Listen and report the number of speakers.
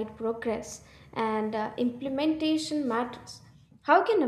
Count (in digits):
1